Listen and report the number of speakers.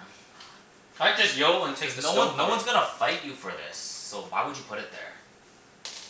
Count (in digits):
2